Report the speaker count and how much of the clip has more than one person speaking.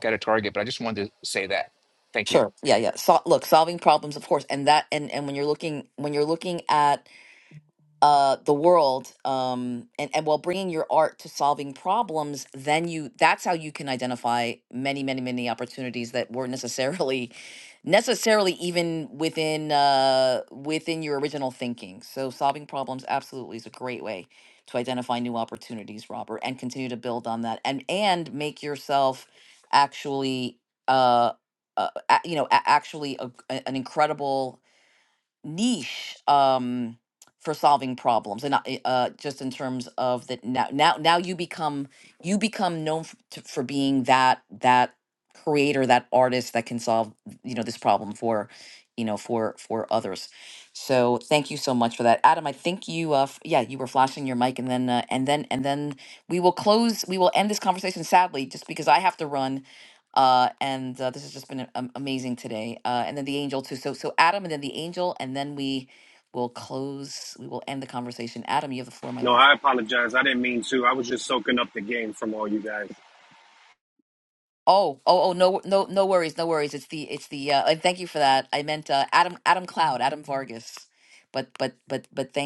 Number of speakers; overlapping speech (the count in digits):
3, under 1%